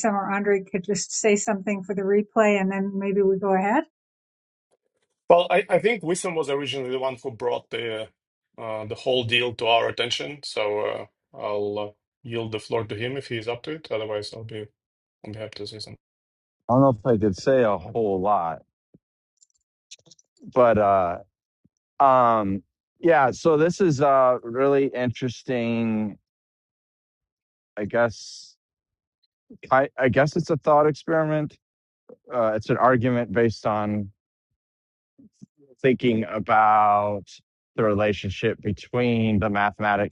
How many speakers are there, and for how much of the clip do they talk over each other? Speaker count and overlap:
3, no overlap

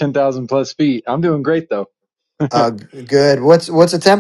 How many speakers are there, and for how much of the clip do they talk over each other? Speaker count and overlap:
2, no overlap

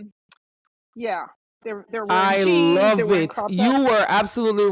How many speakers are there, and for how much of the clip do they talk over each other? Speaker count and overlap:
2, about 35%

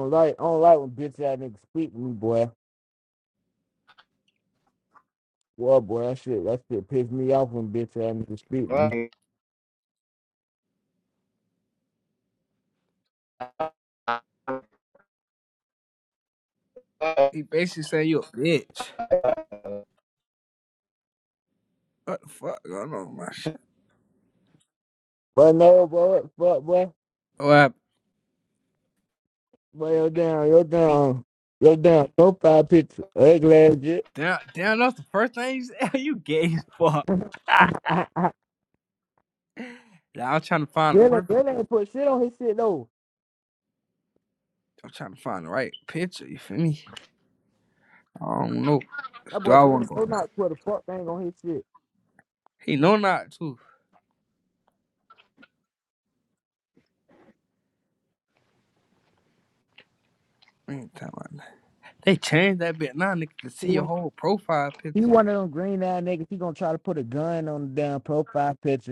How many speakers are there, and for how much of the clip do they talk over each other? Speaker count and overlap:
2, about 1%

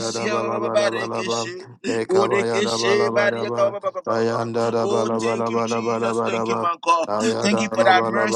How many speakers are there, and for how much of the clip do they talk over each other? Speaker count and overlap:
2, about 77%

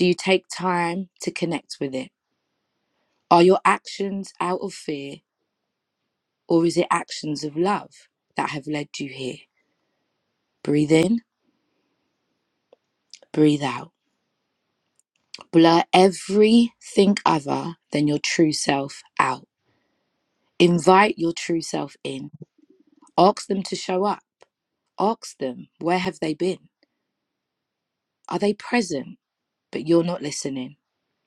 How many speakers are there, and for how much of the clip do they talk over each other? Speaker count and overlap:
1, no overlap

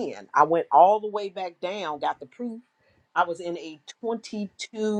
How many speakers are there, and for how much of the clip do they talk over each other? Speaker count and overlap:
1, no overlap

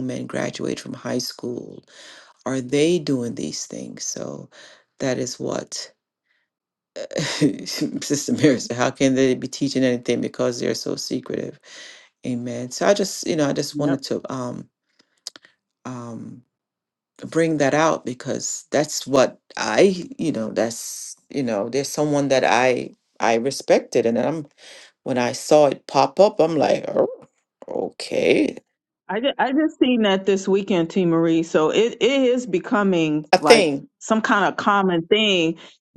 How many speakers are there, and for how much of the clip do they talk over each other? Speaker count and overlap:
2, about 2%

